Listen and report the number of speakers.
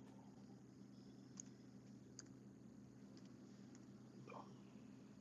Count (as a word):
zero